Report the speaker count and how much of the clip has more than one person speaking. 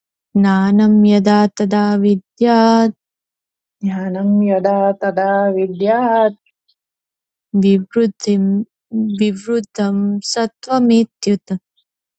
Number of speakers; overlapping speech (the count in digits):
2, no overlap